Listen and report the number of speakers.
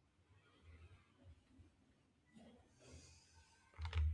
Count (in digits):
0